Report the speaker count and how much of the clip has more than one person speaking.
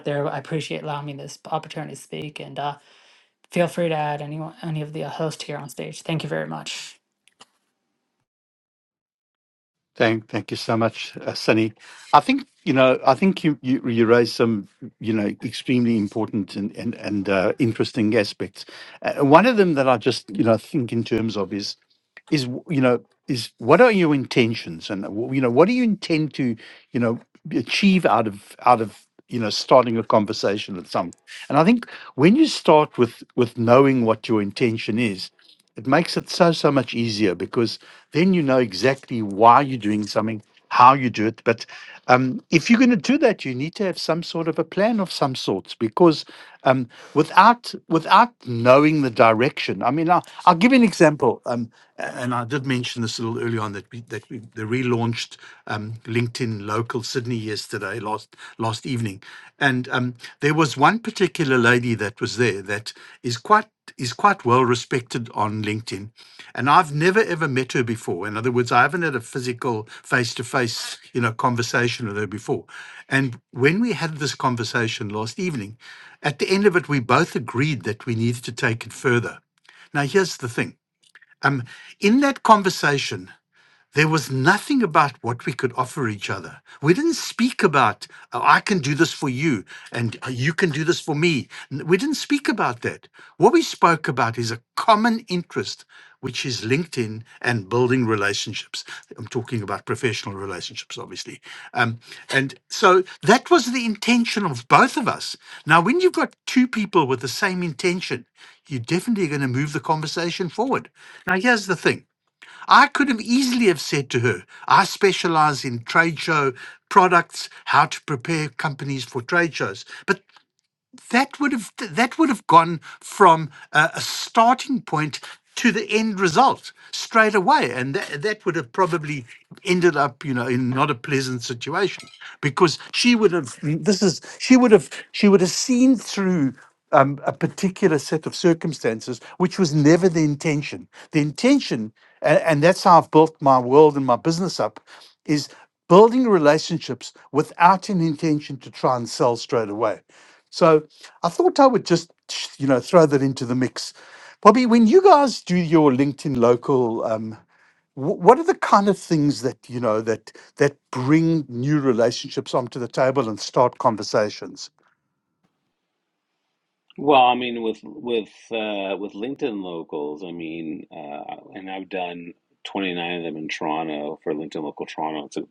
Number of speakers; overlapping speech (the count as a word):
three, no overlap